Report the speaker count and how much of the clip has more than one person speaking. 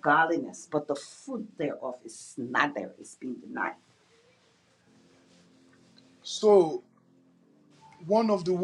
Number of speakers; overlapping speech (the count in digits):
2, no overlap